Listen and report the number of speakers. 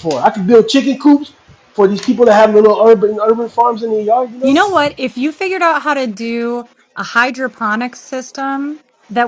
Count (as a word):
two